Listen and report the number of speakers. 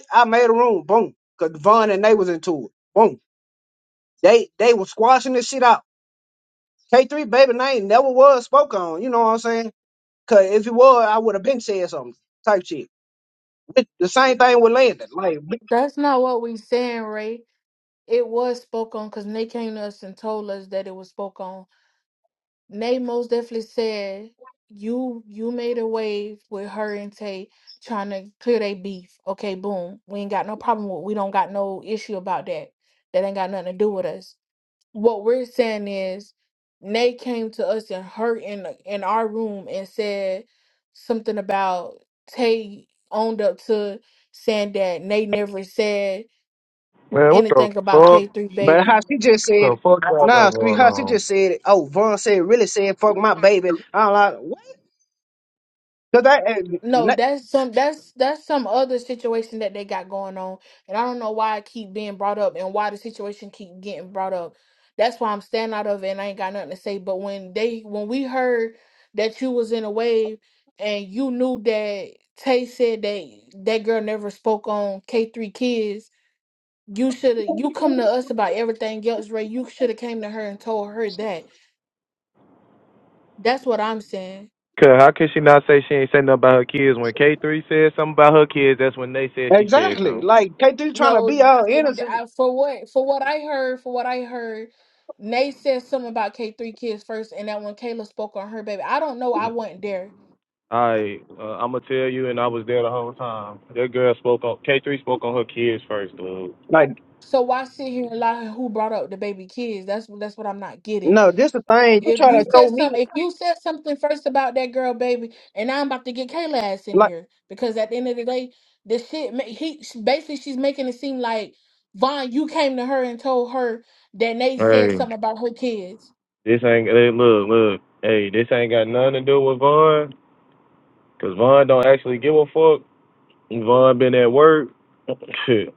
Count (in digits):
3